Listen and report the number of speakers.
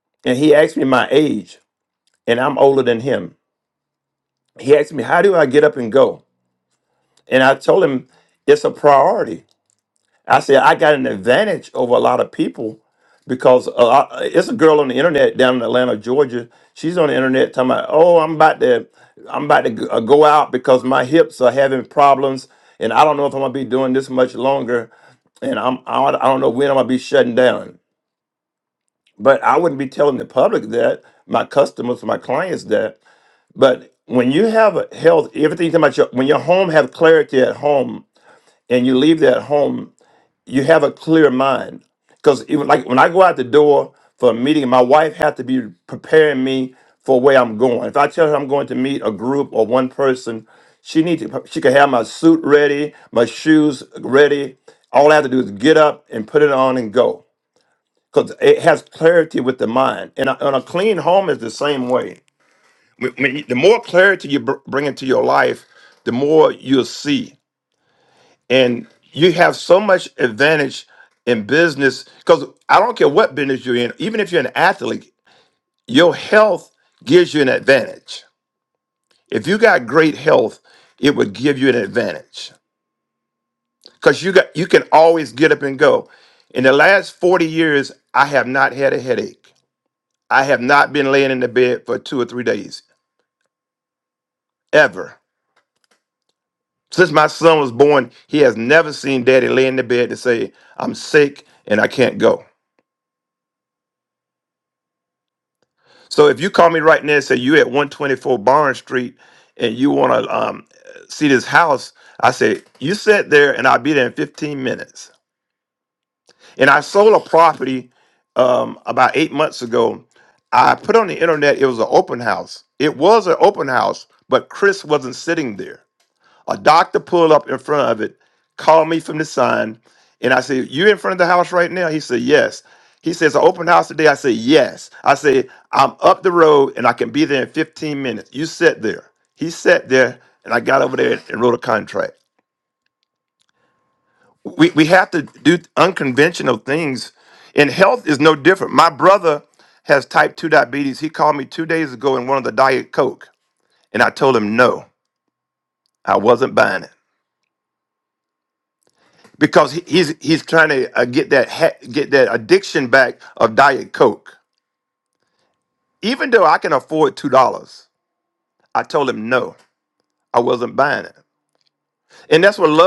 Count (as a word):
one